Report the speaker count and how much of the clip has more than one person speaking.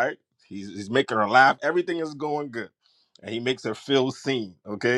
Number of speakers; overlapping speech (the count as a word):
one, no overlap